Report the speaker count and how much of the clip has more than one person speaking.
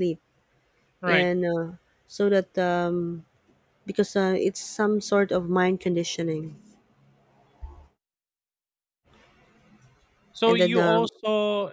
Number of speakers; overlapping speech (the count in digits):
2, about 7%